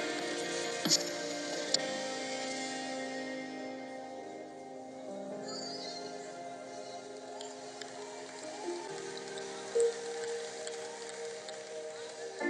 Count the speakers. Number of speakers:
0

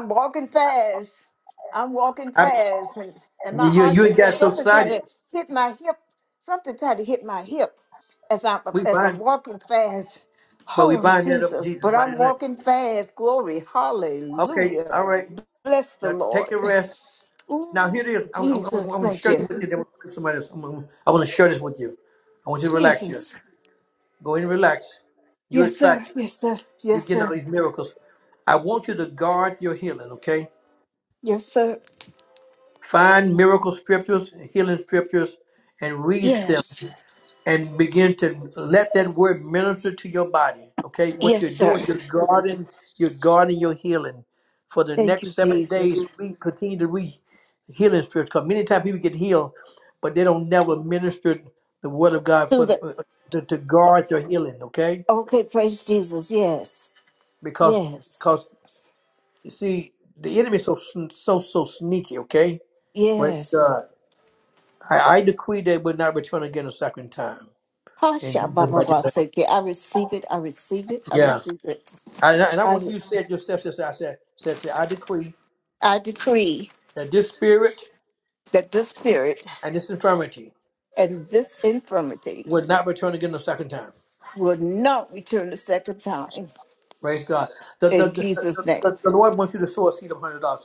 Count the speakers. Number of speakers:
2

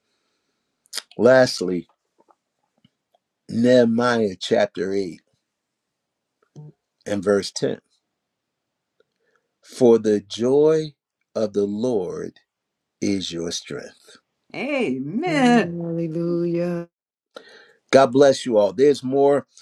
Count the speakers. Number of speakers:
3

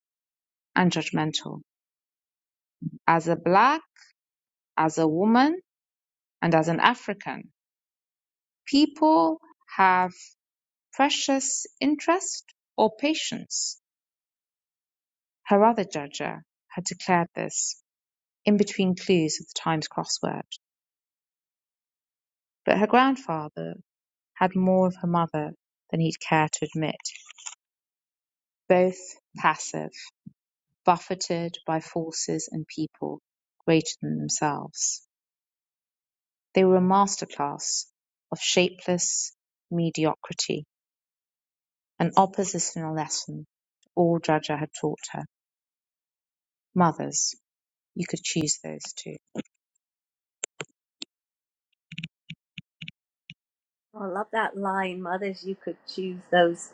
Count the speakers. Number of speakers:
2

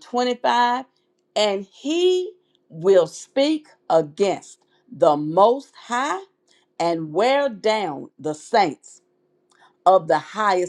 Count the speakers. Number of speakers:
1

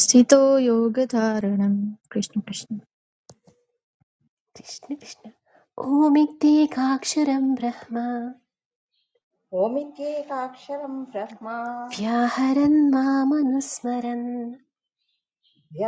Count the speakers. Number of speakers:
3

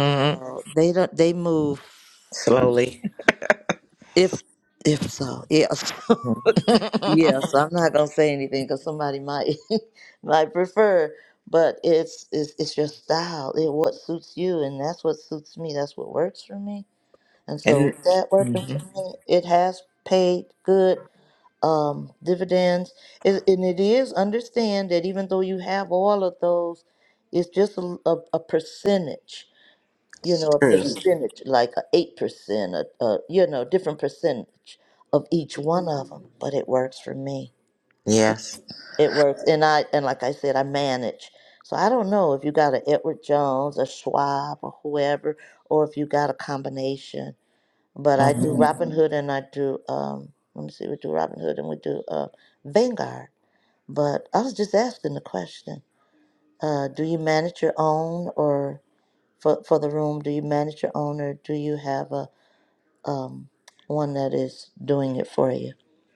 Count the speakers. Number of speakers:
2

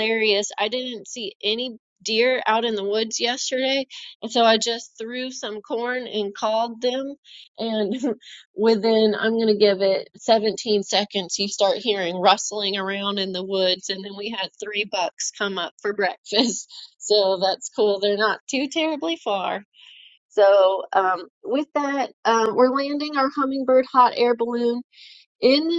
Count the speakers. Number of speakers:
1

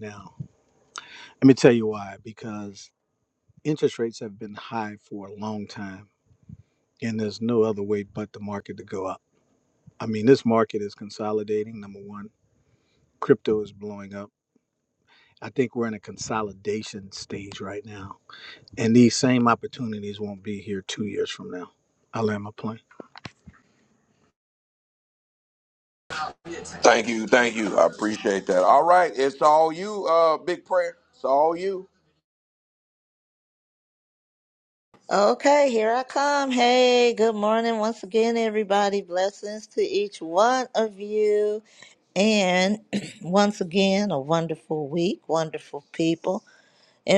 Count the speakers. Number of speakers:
3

